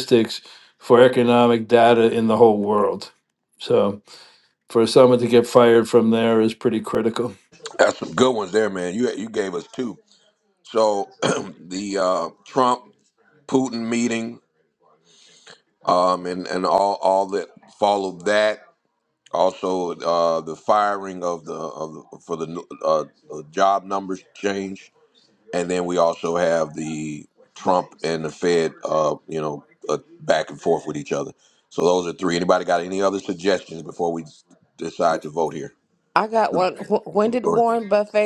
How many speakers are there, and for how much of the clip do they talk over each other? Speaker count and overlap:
3, about 1%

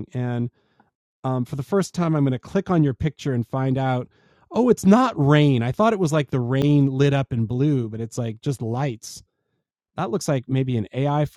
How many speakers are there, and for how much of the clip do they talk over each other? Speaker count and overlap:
1, no overlap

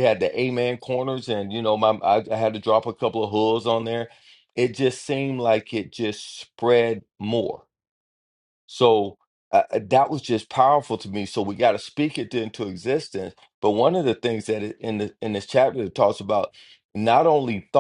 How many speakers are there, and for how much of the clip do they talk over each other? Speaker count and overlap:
1, no overlap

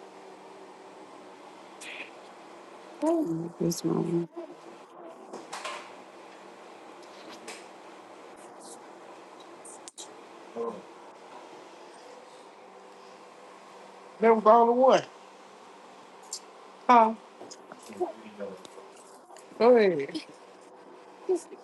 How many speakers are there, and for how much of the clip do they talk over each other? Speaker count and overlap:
2, no overlap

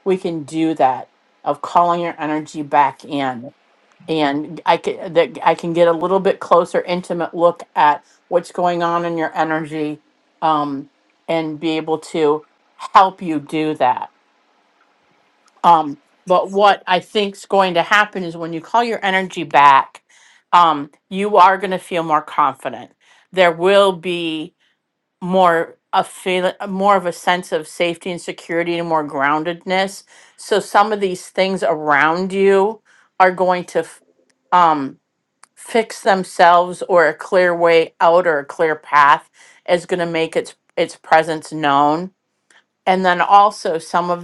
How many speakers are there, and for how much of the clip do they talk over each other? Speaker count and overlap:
1, no overlap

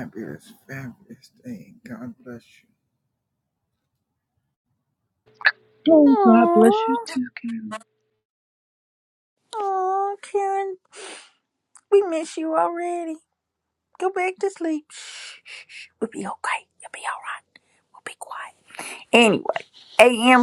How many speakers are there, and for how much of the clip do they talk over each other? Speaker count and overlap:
3, about 5%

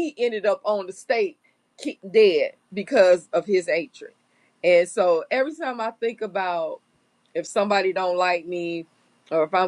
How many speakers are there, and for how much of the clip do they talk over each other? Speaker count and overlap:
1, no overlap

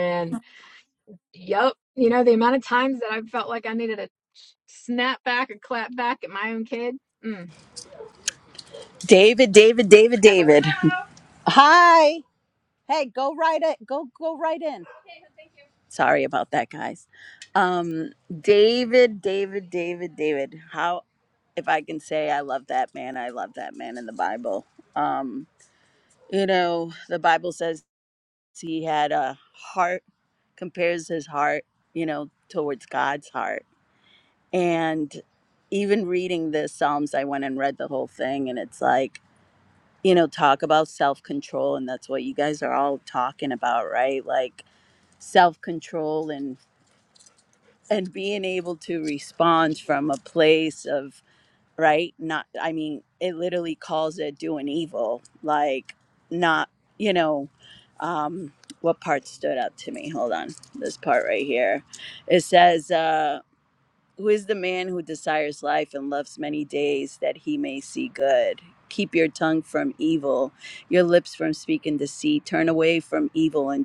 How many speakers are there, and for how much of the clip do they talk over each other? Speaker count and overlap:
2, under 1%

